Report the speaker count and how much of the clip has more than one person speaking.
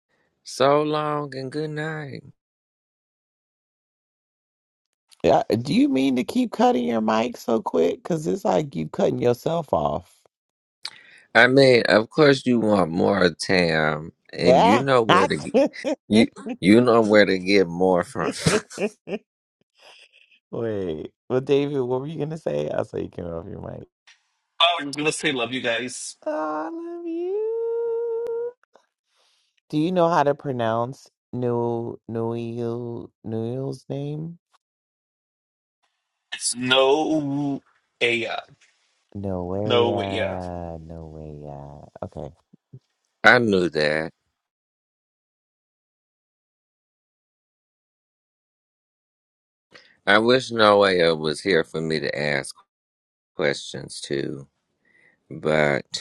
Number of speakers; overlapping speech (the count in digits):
3, about 2%